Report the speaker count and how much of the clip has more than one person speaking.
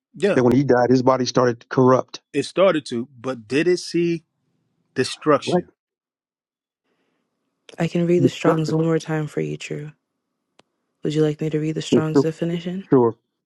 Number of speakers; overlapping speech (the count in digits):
3, about 8%